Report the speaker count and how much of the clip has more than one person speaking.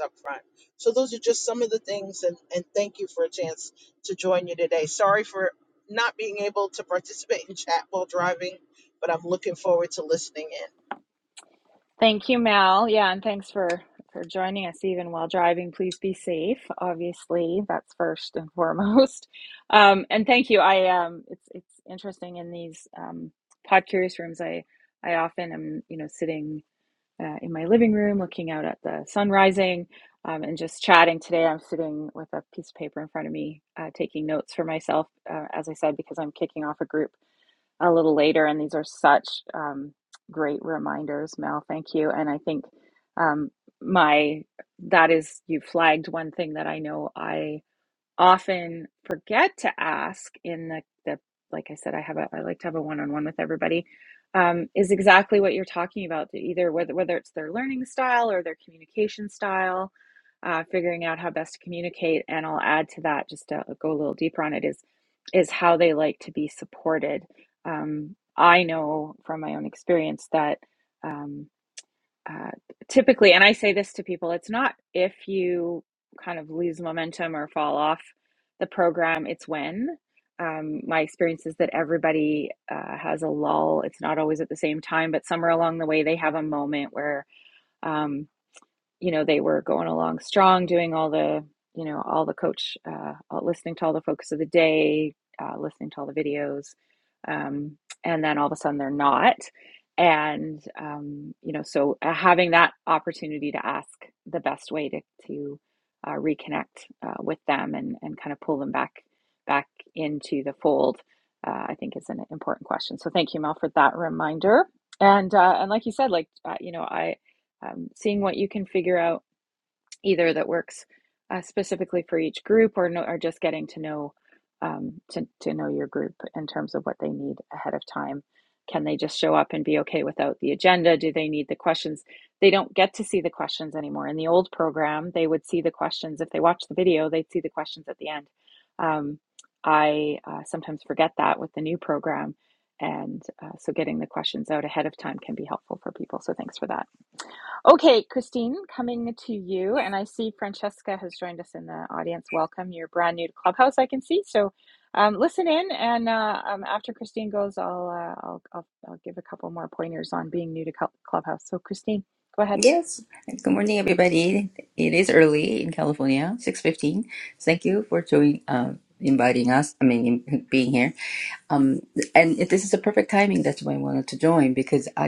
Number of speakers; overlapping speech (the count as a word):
three, under 1%